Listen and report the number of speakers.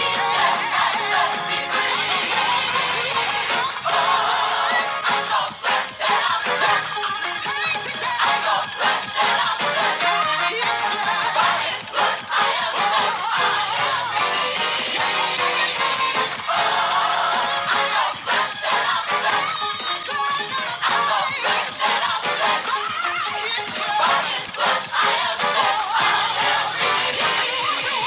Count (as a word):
zero